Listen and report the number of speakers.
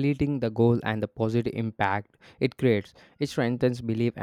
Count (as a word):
one